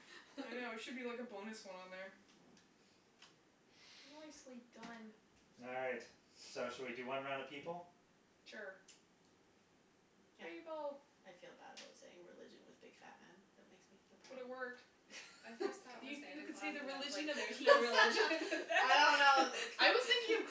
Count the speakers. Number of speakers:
four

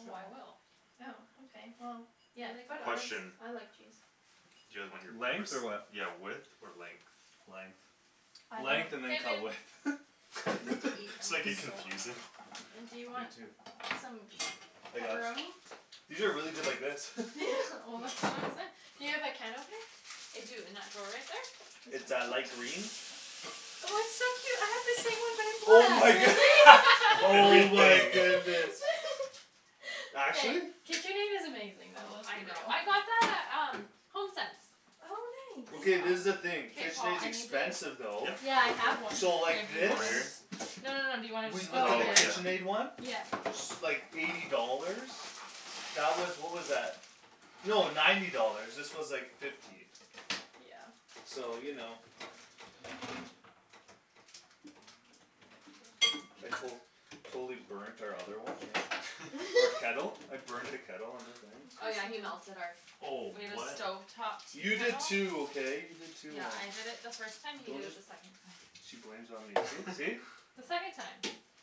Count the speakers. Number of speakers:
four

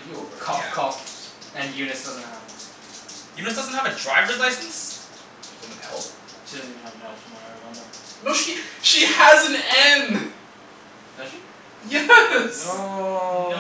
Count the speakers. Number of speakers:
four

